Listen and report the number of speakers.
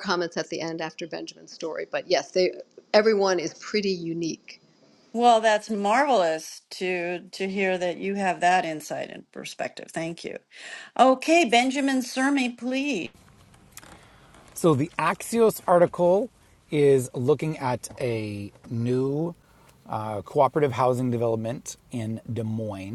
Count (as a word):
three